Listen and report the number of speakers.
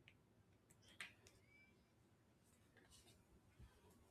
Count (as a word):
zero